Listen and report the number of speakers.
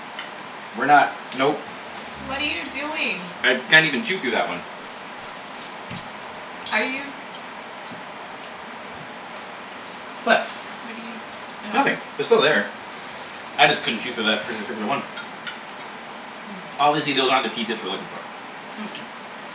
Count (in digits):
2